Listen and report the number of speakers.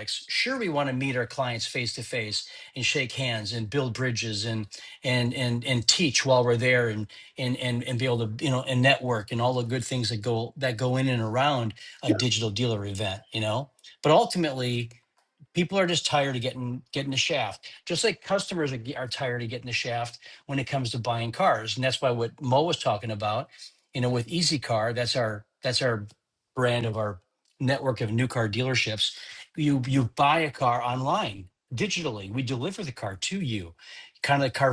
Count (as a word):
one